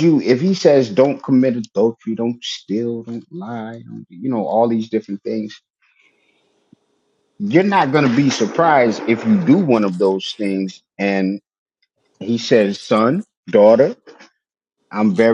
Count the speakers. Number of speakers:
1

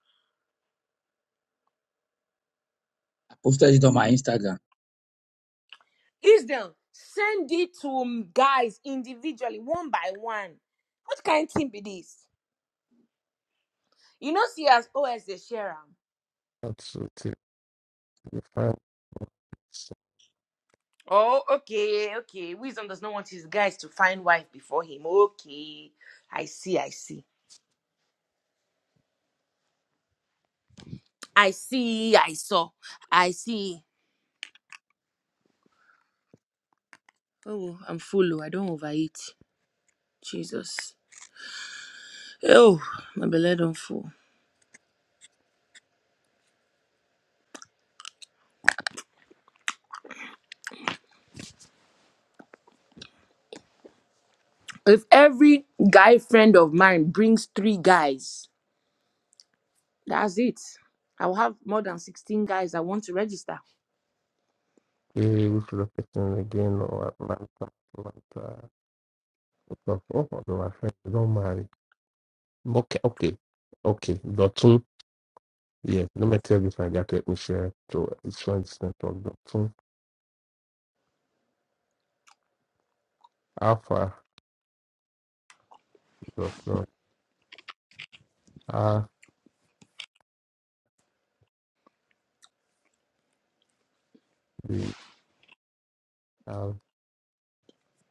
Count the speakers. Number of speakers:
3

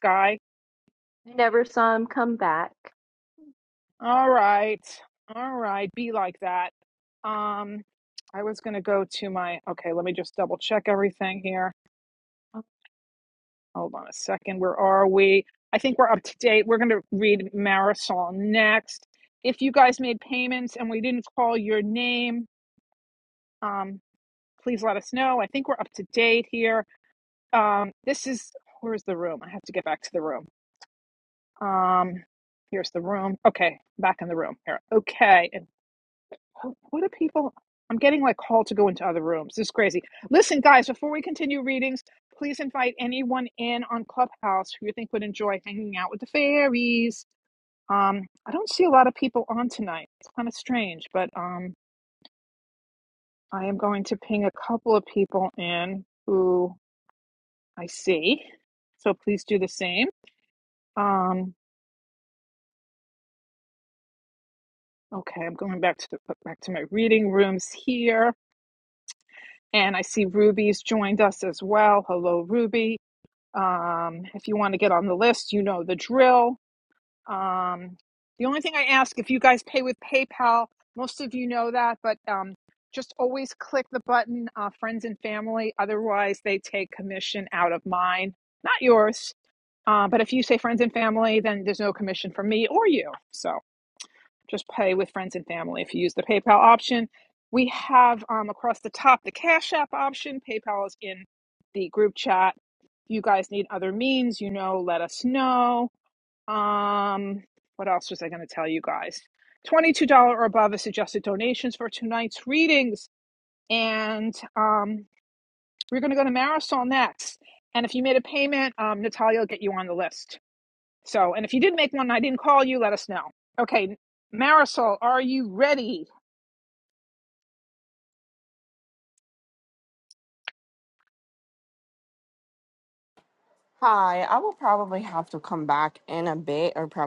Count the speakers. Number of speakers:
3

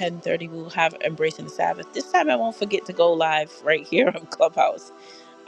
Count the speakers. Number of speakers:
1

